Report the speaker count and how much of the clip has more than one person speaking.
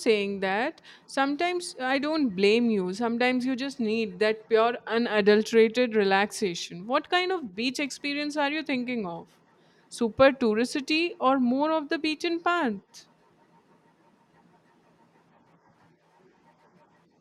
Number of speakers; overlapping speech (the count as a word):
one, no overlap